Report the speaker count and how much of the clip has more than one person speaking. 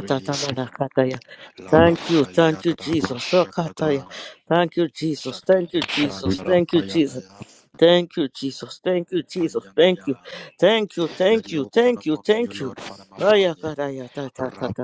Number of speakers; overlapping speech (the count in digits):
2, about 55%